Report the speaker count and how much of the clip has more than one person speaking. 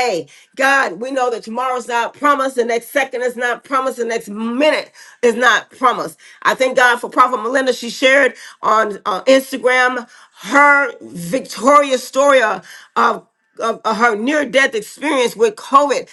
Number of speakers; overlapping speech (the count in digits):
1, no overlap